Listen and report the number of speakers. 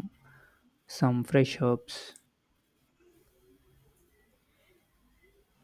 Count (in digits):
1